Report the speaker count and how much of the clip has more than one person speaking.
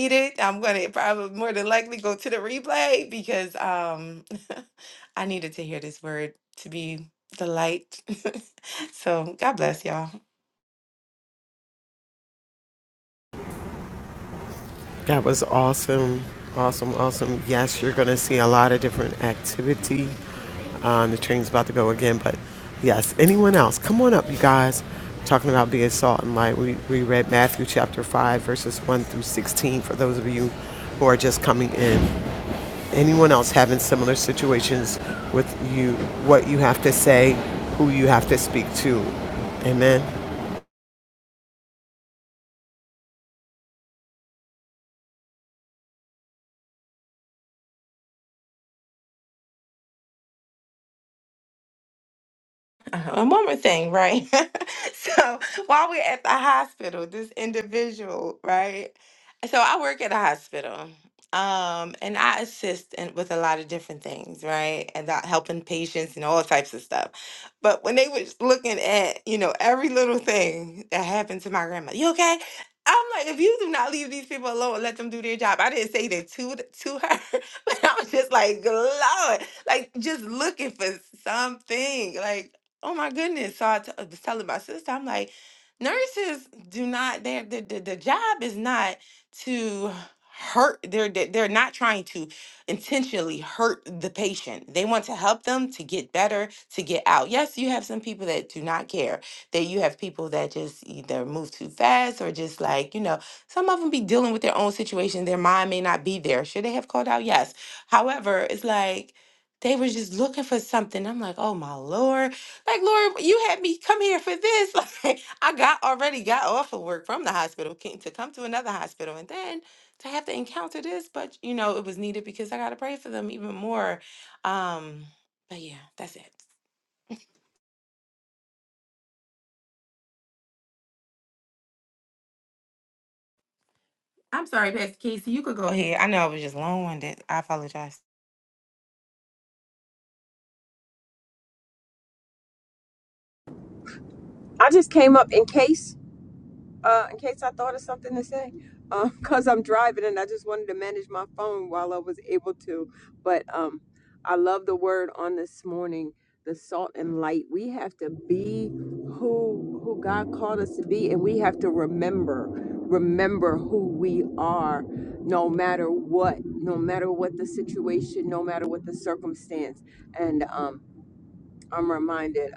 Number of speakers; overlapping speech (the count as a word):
three, no overlap